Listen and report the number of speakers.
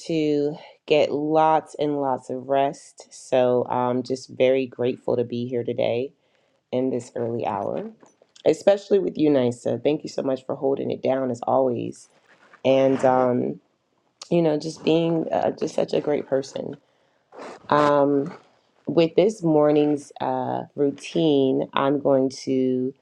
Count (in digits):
1